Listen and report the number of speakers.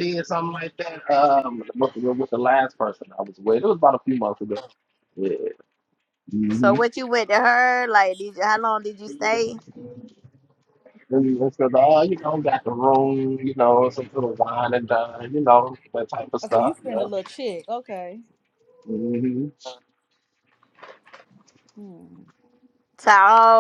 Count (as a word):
three